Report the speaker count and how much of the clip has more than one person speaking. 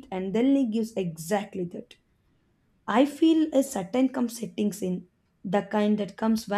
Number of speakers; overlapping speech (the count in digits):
1, no overlap